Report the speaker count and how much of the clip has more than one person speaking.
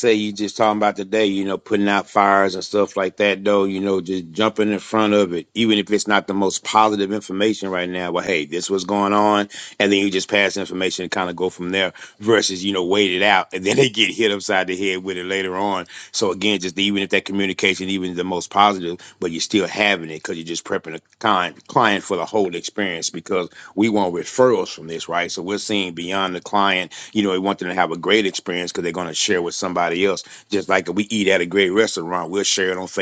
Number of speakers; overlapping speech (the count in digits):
1, no overlap